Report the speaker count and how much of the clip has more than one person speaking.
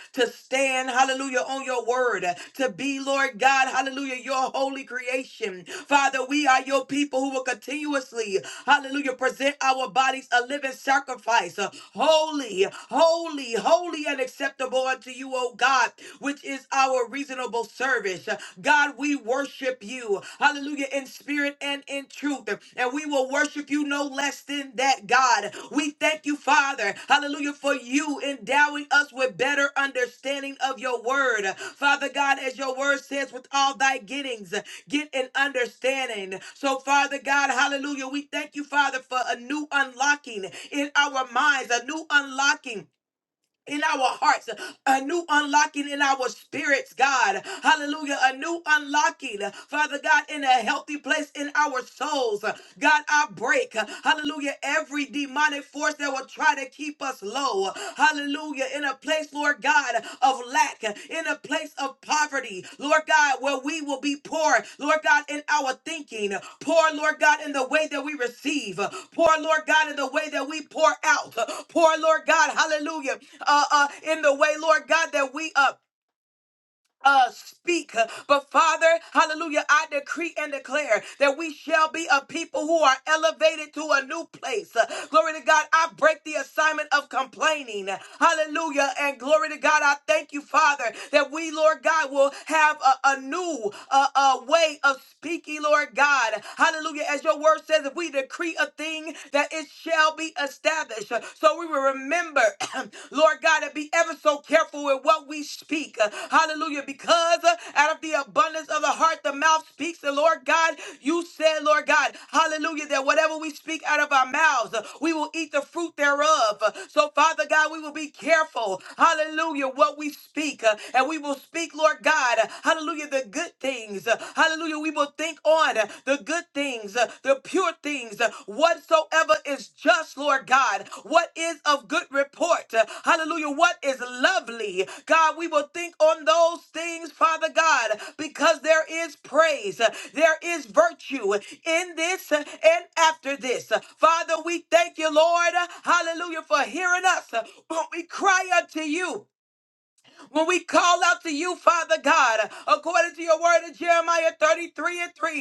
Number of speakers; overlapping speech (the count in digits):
1, no overlap